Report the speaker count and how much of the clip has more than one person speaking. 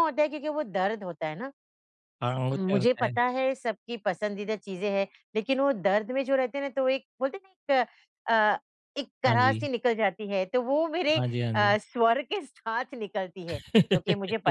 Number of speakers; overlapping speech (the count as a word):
two, about 9%